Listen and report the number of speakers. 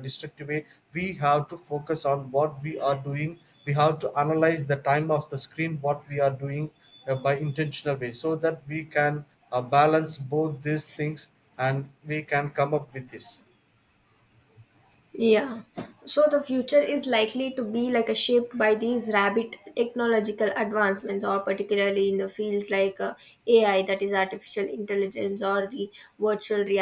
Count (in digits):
2